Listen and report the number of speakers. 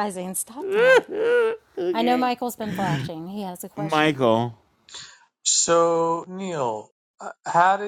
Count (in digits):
3